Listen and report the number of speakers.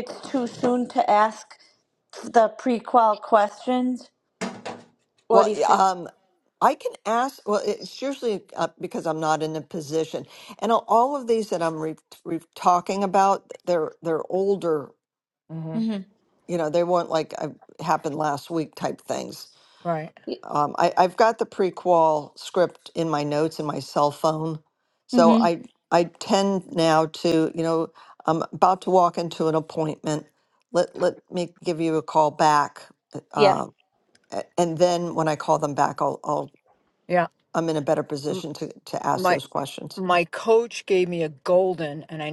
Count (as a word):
three